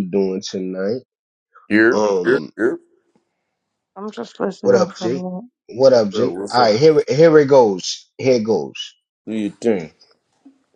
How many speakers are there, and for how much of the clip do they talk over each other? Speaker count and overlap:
three, about 19%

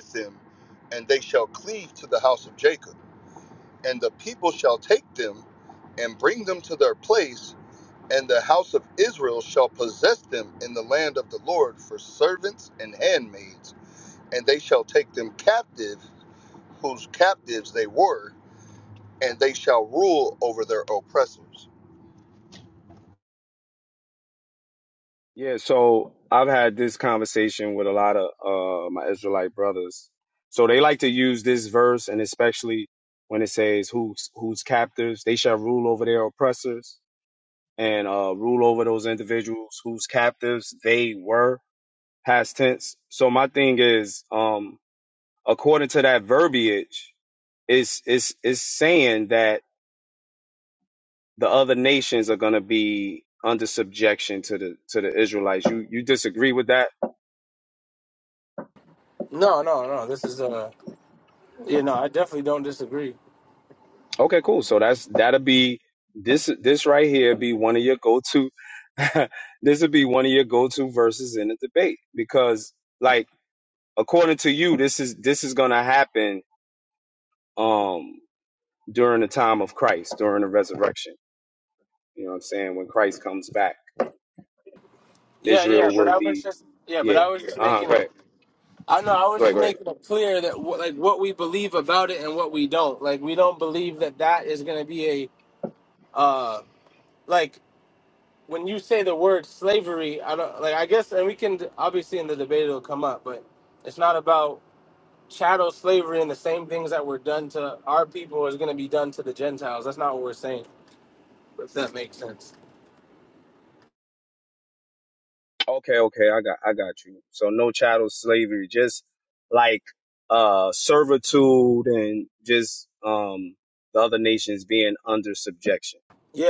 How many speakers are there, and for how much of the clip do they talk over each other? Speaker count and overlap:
three, about 2%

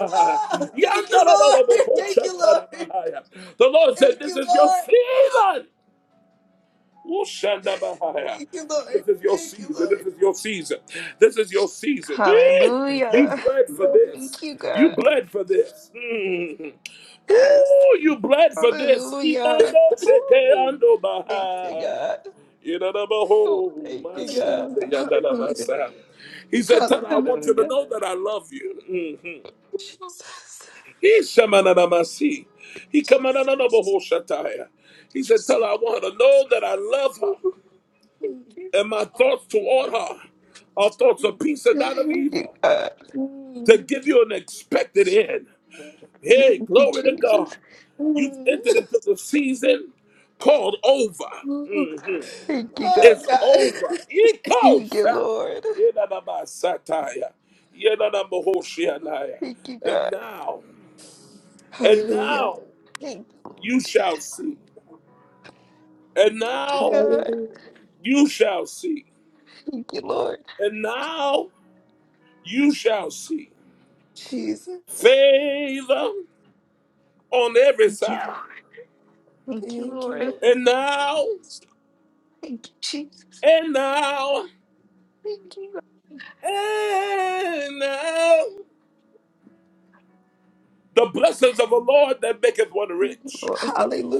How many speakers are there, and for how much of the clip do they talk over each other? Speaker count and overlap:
three, about 19%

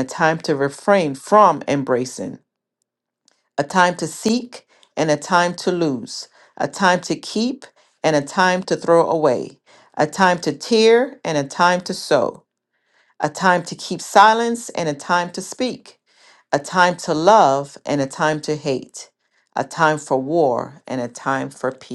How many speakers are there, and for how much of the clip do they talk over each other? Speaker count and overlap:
one, no overlap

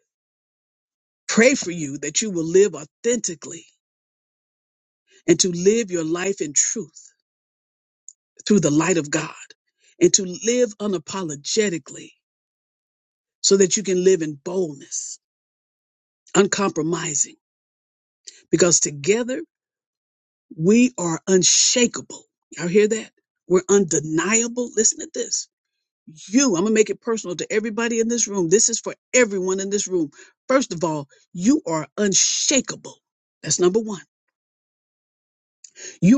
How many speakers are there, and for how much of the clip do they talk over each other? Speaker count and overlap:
one, no overlap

